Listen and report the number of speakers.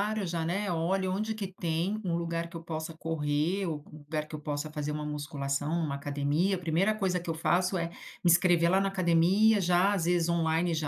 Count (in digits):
1